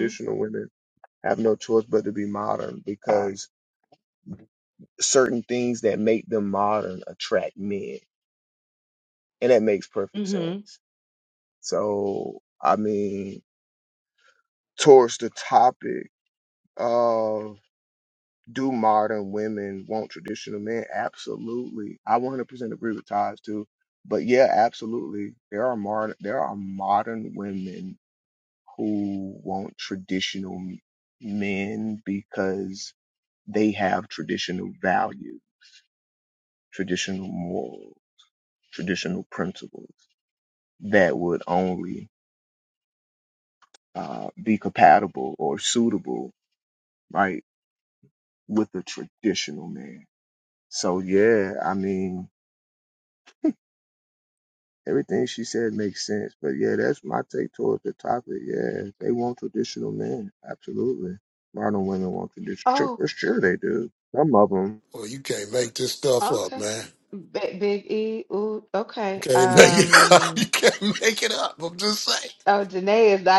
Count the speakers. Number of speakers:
3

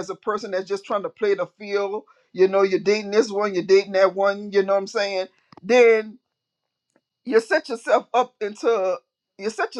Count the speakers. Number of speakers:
1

